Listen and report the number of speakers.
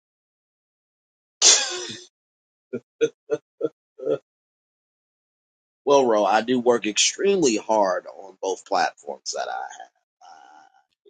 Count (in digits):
1